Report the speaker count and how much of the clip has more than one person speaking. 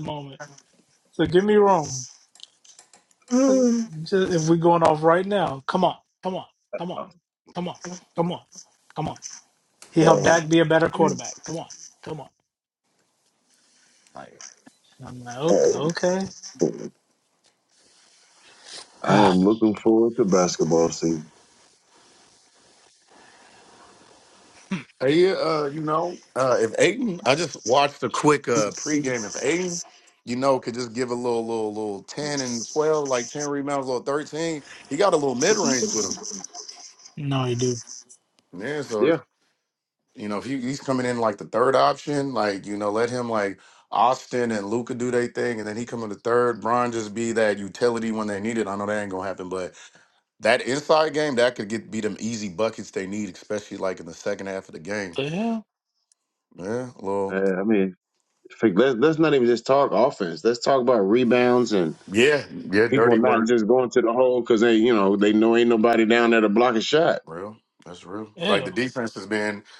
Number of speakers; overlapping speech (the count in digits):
3, about 4%